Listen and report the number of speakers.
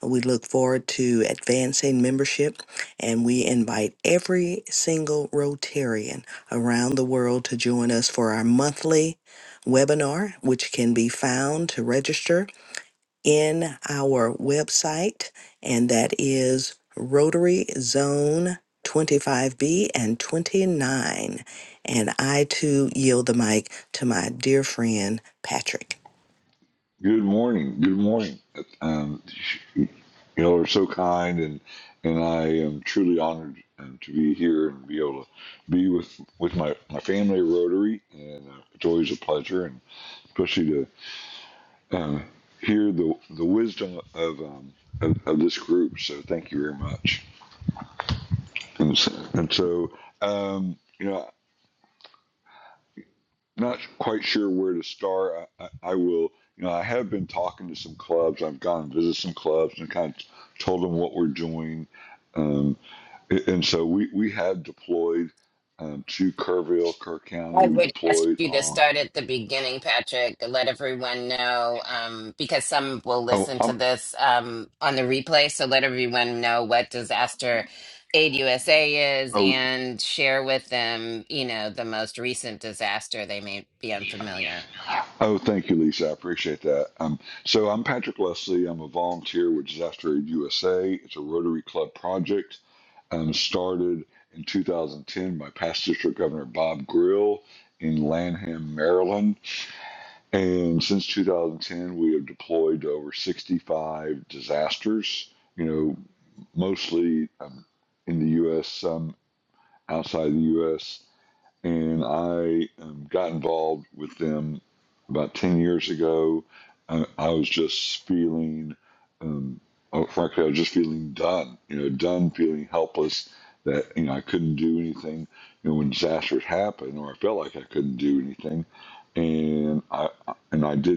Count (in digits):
3